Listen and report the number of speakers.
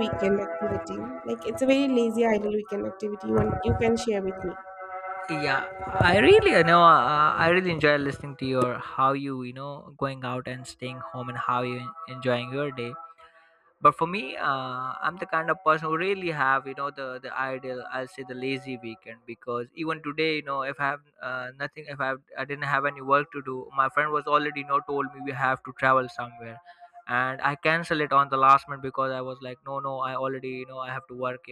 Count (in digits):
2